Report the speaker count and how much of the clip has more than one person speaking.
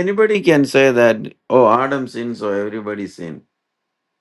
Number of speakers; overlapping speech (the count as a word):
one, no overlap